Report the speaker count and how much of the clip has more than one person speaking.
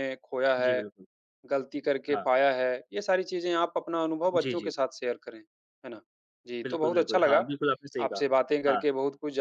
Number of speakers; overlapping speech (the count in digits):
2, about 23%